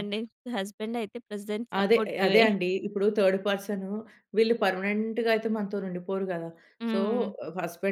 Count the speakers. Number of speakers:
2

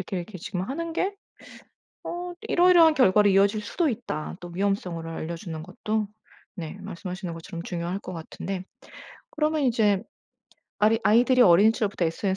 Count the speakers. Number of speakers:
1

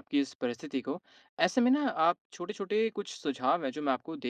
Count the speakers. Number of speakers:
1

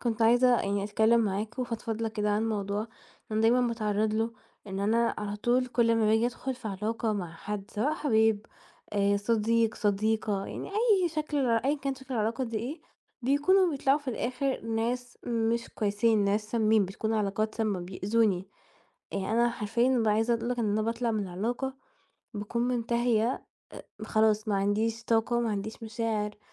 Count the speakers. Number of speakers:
1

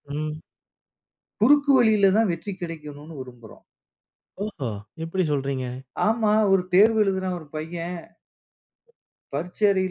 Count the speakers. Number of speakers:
2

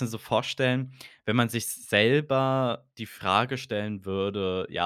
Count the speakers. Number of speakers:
1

